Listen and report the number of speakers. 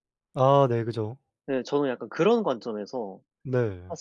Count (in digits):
2